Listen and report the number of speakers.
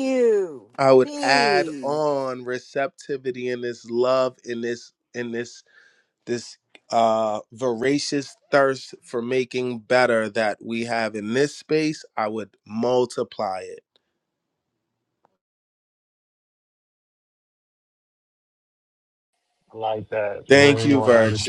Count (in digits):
3